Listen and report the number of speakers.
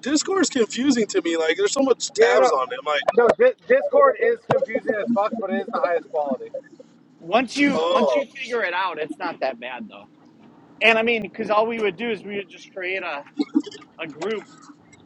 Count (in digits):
3